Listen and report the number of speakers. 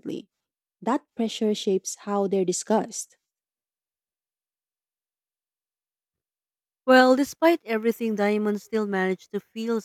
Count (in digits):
2